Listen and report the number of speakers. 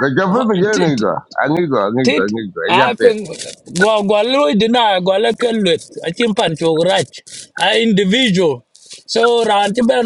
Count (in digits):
2